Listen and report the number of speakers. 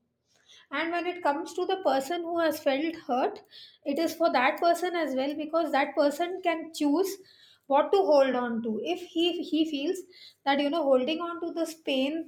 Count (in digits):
1